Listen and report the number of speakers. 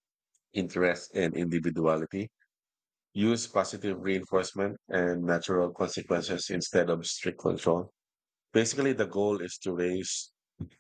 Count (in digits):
1